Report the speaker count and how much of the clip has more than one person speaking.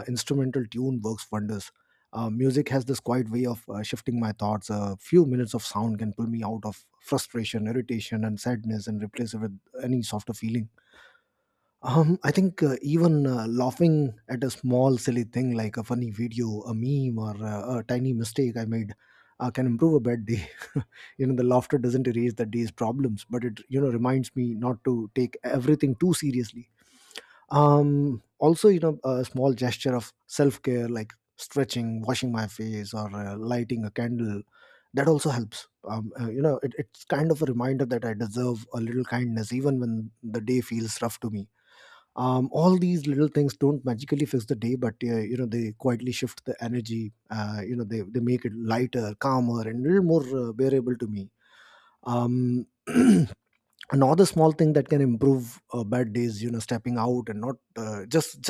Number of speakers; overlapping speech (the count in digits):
1, no overlap